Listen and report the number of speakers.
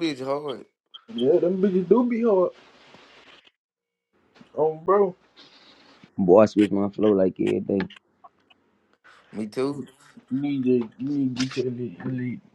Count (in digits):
3